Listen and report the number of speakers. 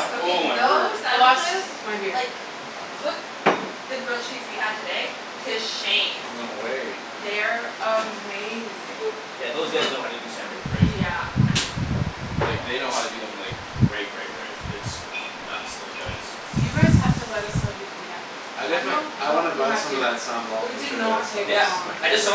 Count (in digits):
4